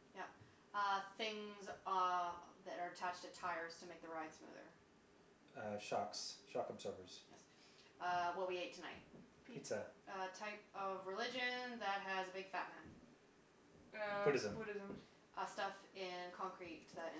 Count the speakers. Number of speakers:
3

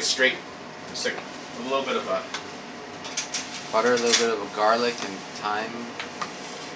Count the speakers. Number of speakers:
2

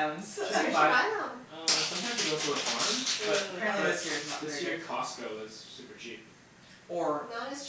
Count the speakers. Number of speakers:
3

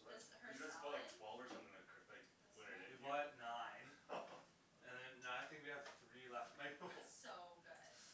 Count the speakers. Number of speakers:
3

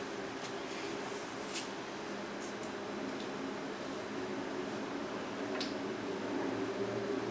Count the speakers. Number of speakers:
0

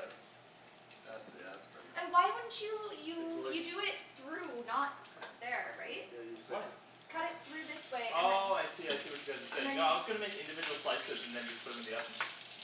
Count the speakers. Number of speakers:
3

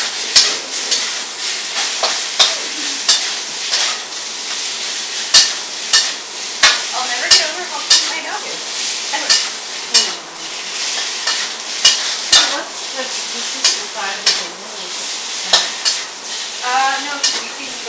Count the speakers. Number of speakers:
2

